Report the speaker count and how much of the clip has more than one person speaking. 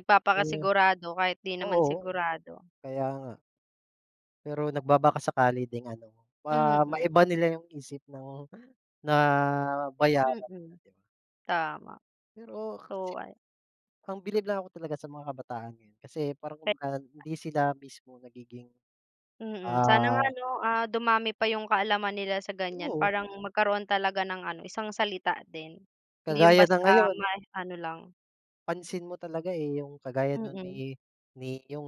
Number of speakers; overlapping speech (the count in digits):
2, about 12%